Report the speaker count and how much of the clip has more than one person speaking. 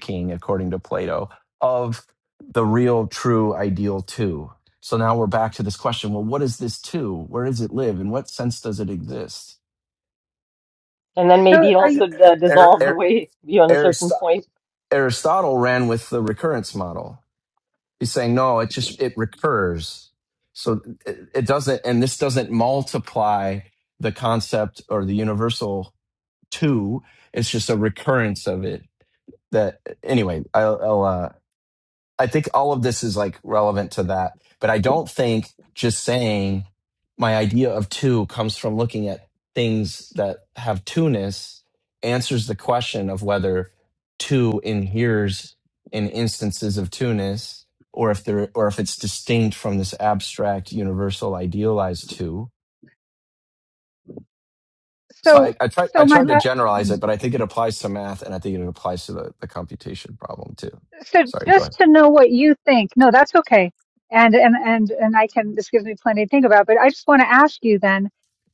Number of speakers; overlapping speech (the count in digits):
3, about 3%